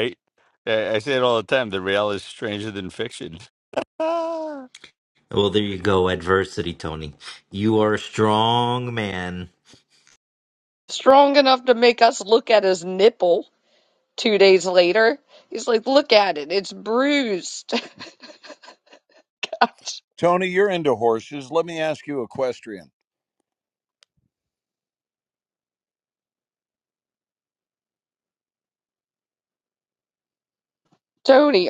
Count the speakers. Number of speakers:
four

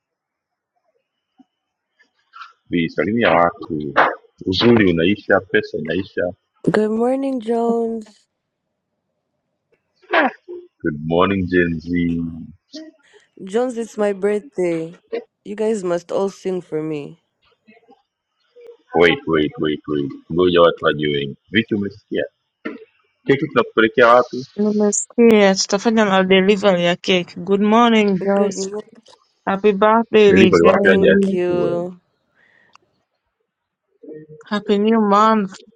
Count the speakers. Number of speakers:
three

